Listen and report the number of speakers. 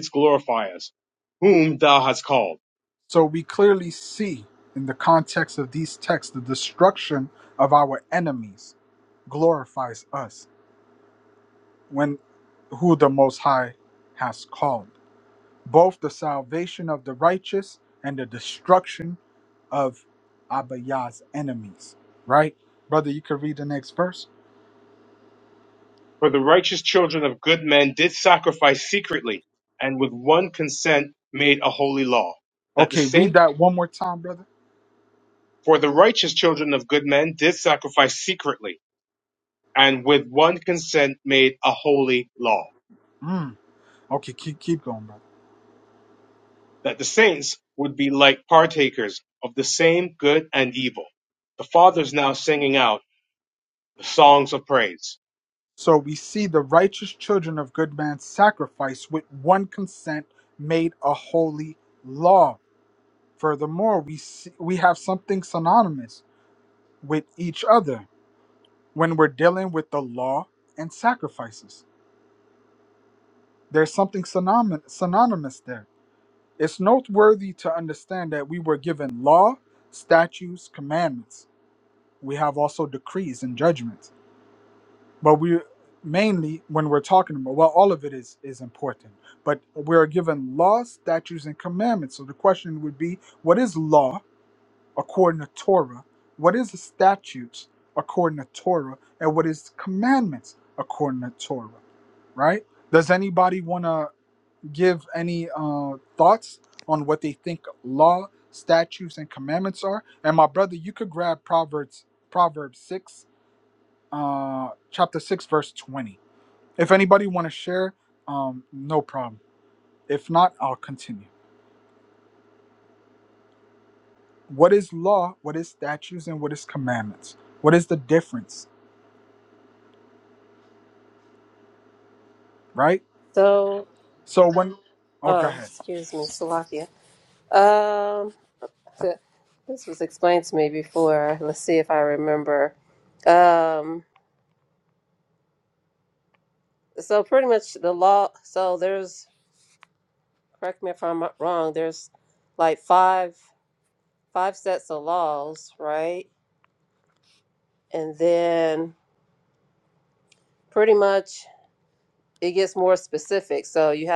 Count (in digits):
3